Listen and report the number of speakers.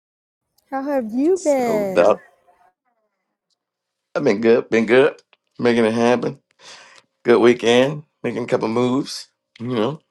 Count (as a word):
two